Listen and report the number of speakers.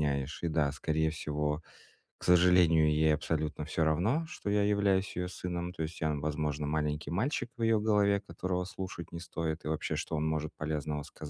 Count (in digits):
1